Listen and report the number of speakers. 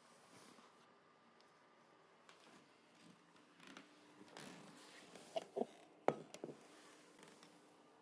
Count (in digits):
0